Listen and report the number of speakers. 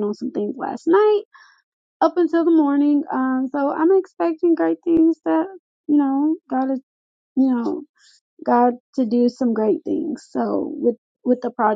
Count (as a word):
one